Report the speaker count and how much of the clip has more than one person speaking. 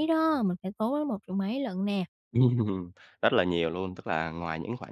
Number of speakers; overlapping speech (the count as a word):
two, no overlap